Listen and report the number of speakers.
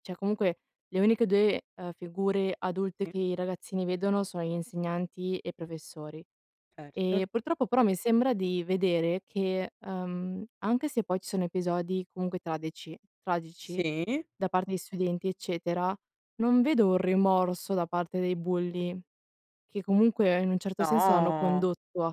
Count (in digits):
2